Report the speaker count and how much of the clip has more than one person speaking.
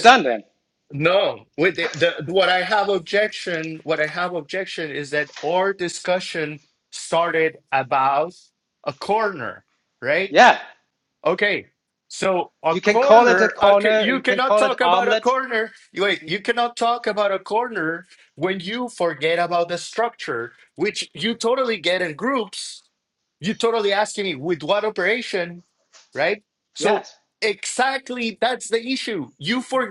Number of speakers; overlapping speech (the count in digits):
2, about 10%